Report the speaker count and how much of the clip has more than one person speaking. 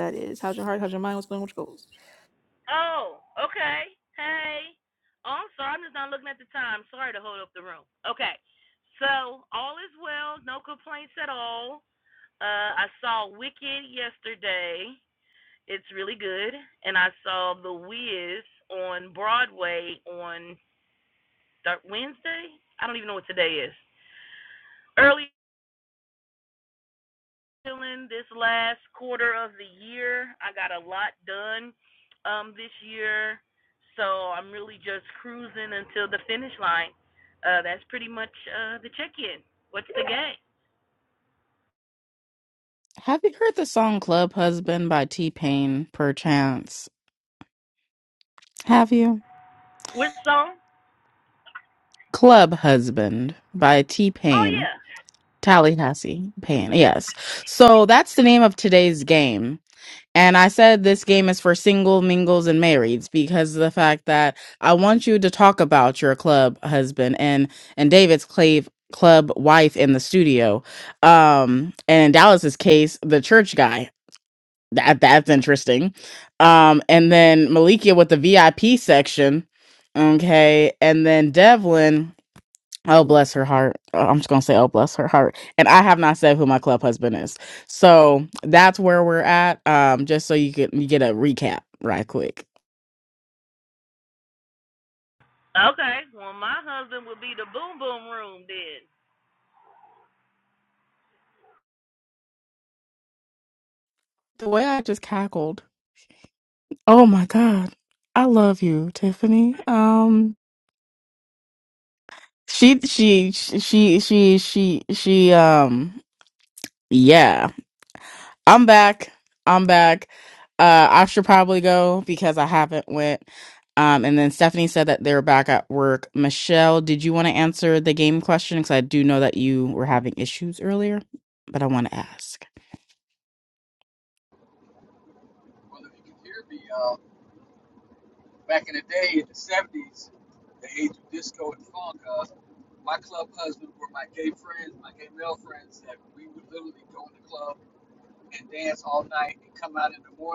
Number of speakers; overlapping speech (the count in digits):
4, under 1%